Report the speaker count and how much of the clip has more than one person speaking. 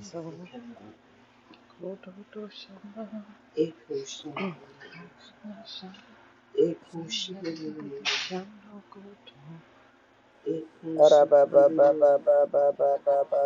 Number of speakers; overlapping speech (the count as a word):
three, about 25%